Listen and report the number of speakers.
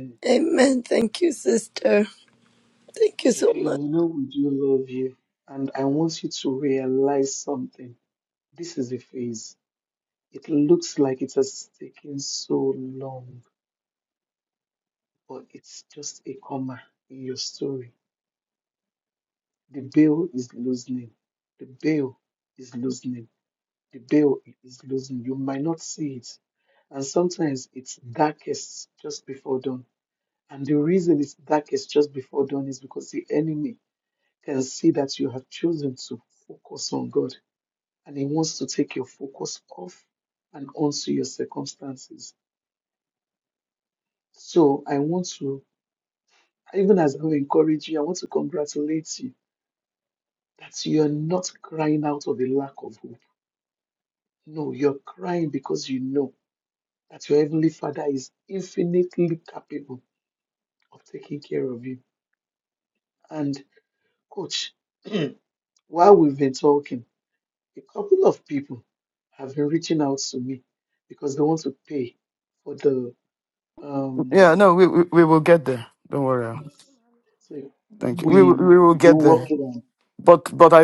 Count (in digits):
3